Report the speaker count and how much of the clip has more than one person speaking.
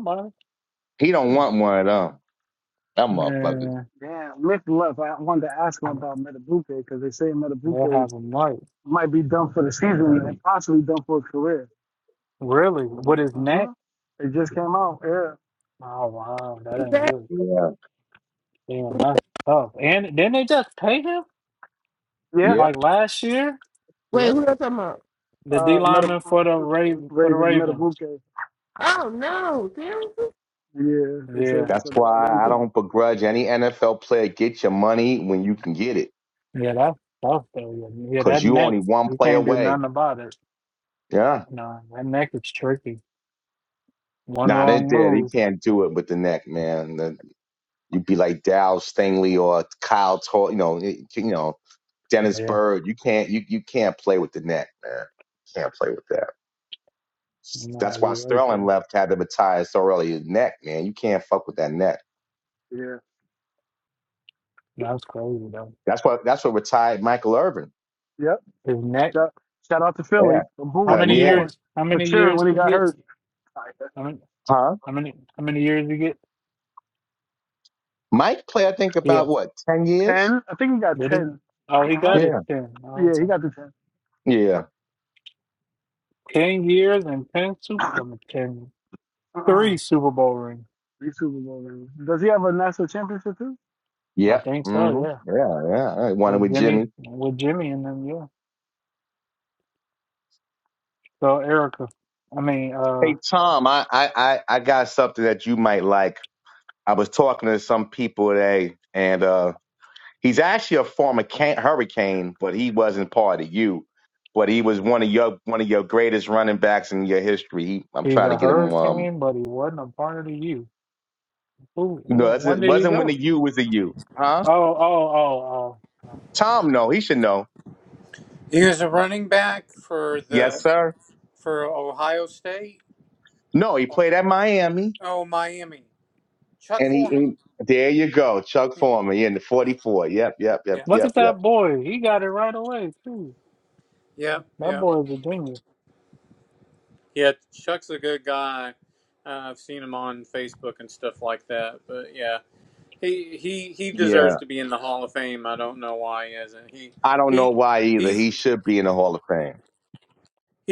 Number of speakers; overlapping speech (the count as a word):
five, about 11%